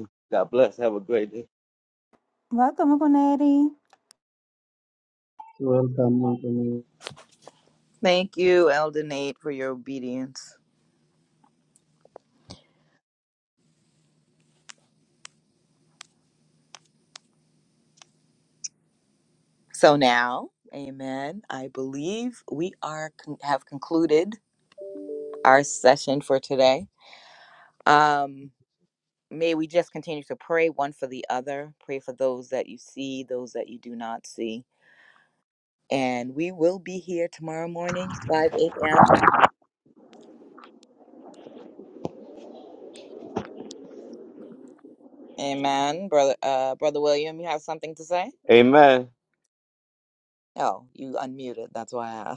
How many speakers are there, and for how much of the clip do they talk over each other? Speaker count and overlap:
4, no overlap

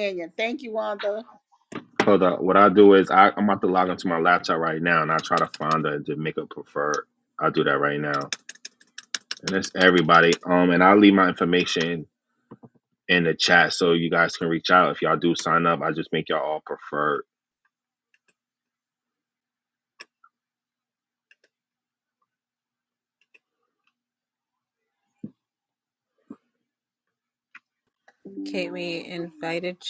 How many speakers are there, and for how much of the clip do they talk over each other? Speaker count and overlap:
3, no overlap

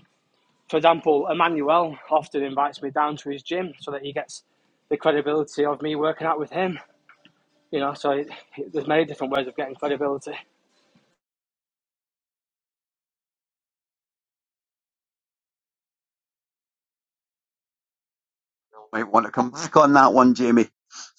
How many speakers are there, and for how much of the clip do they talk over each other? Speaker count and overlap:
2, no overlap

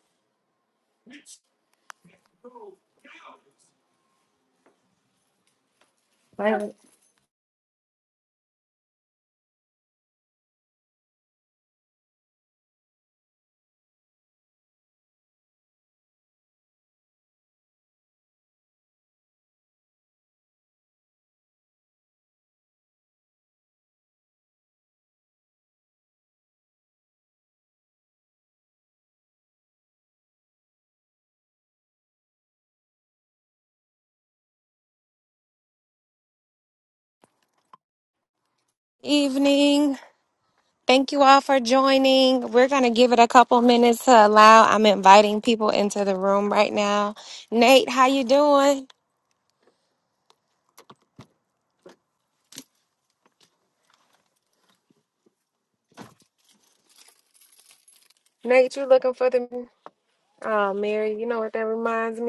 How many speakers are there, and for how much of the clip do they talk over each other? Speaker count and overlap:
1, no overlap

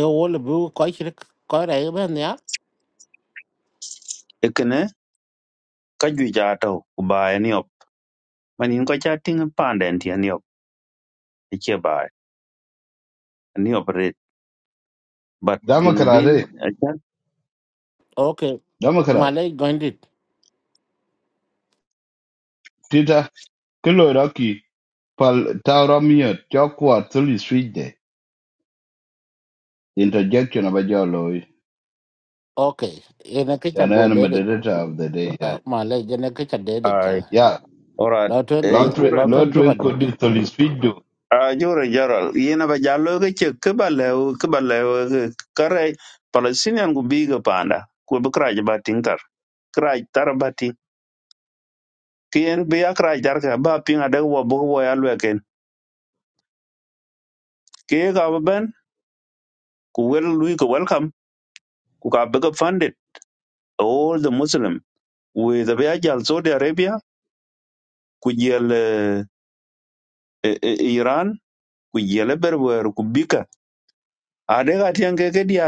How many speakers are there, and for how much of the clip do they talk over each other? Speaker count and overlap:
3, about 4%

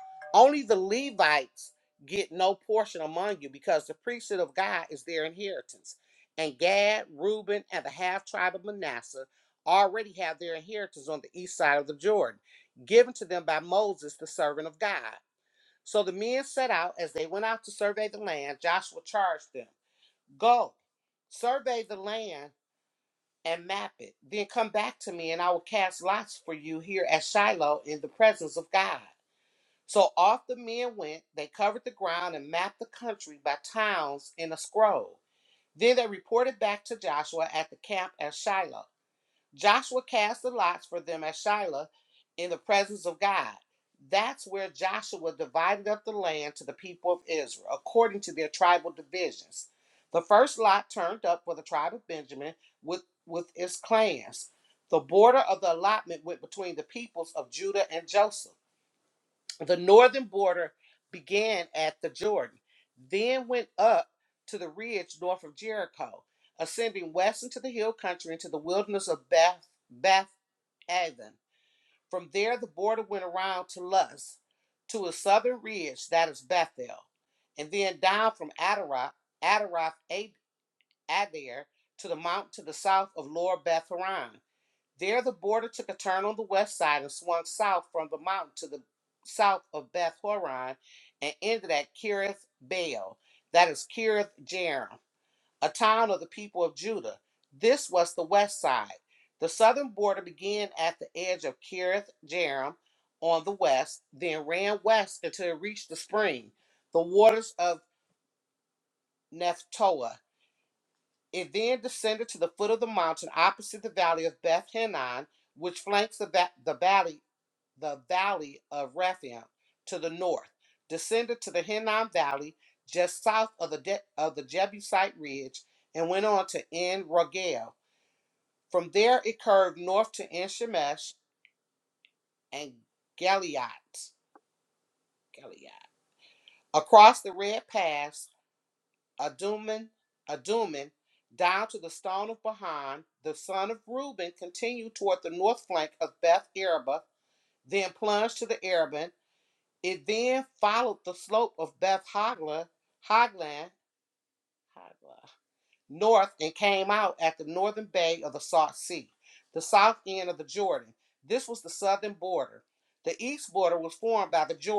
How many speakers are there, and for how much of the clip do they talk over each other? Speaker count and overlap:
1, no overlap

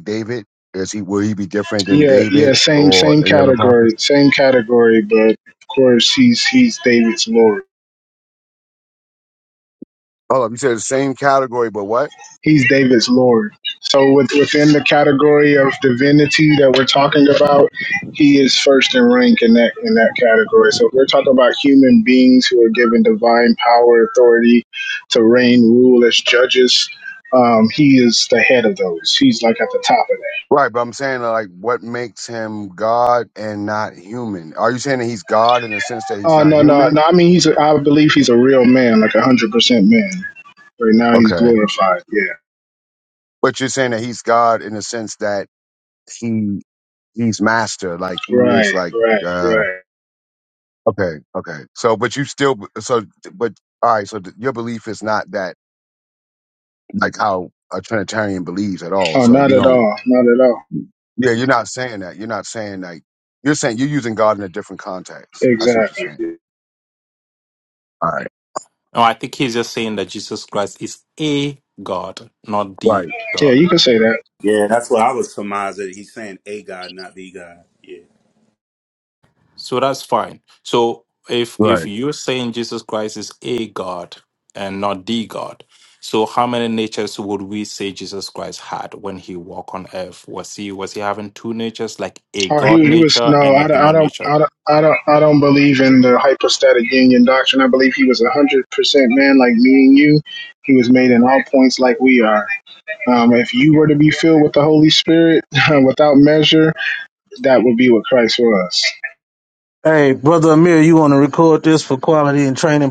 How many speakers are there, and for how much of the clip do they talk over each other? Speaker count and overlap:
5, about 7%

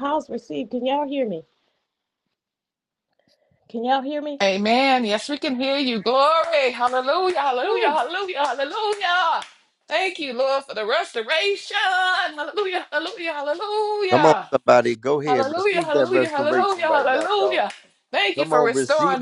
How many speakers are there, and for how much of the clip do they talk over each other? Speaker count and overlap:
3, about 20%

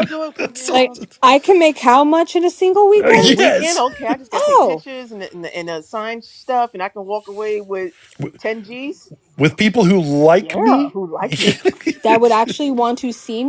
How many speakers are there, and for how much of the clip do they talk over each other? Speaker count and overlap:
3, about 22%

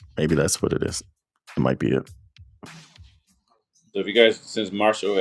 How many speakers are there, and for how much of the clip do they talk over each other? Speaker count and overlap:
2, no overlap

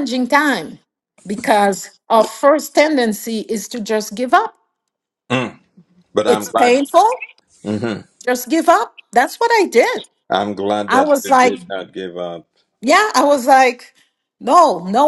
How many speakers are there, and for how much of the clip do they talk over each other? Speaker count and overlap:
2, about 8%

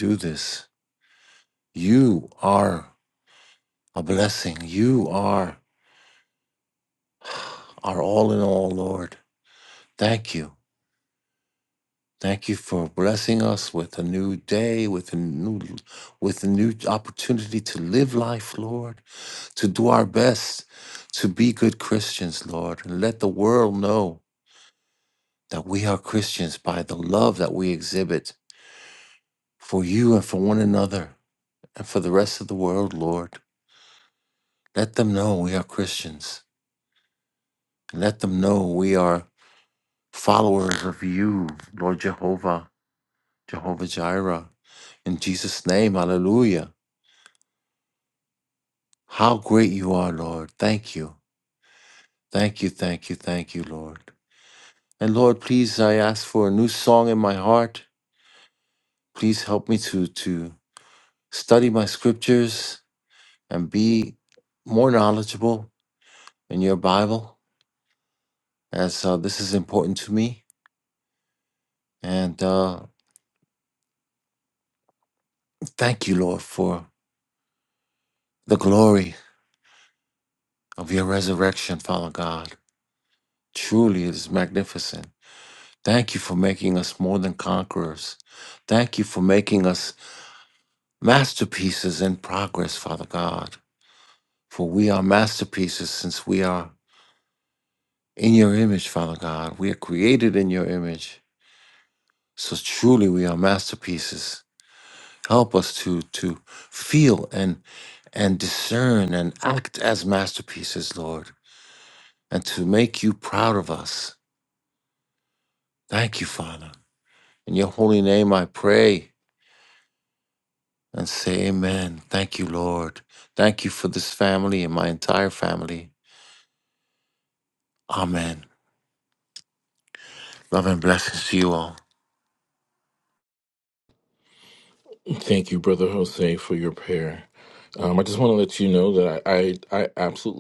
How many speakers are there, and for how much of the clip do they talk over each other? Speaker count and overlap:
2, no overlap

